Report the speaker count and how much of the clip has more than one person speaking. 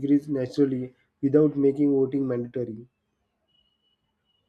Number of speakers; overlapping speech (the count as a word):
one, no overlap